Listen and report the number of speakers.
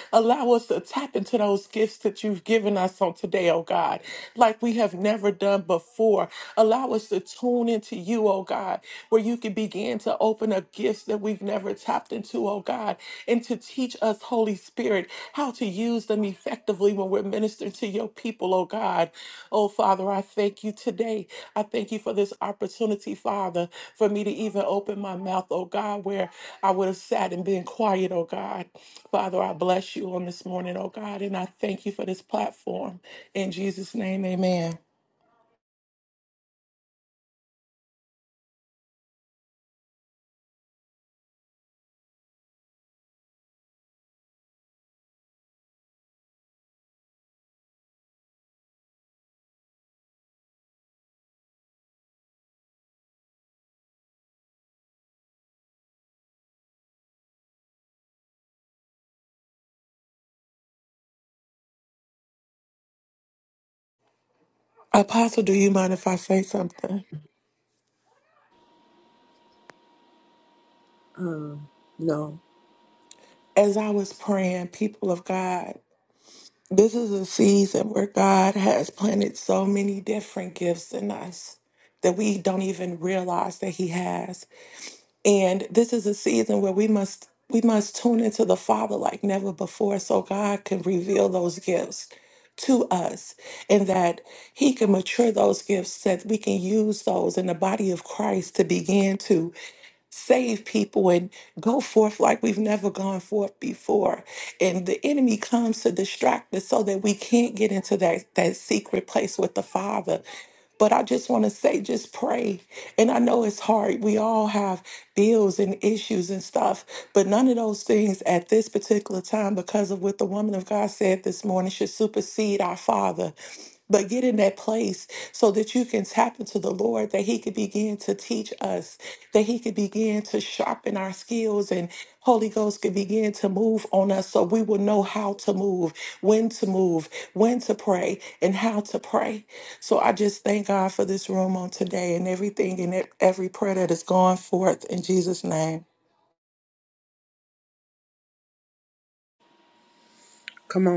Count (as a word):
two